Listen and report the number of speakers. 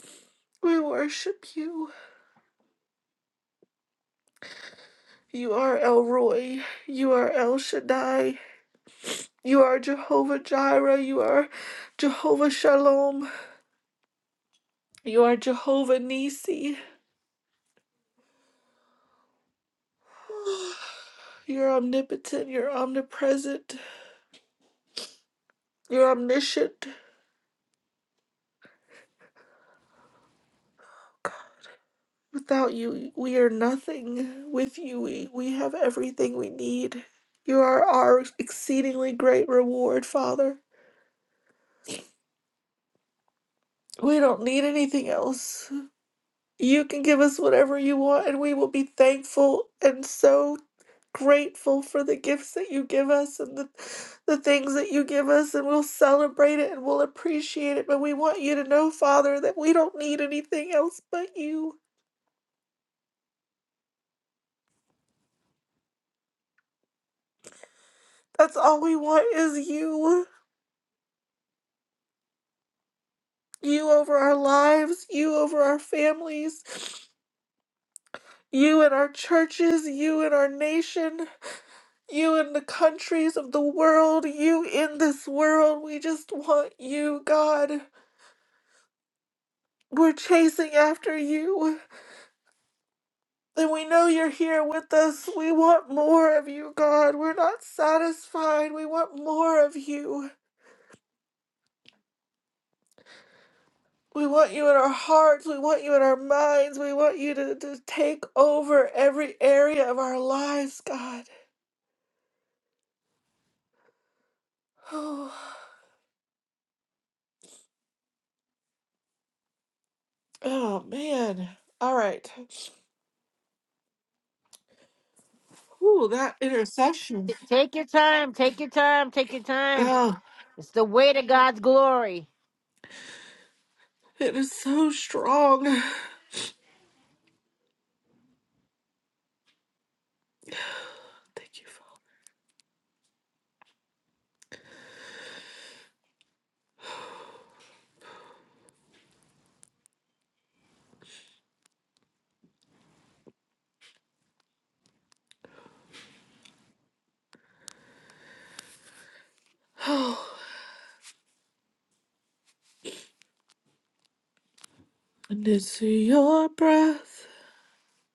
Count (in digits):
2